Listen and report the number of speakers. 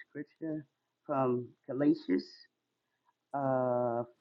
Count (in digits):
1